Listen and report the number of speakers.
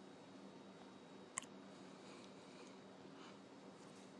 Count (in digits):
0